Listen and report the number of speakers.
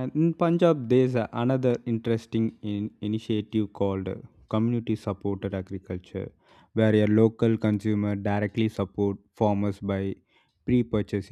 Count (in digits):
1